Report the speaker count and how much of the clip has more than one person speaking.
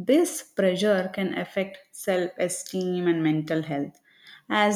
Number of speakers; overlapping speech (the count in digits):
1, no overlap